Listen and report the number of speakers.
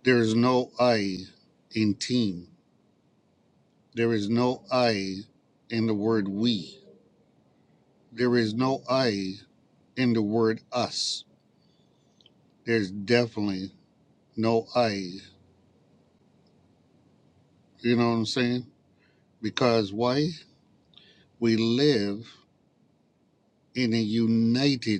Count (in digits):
1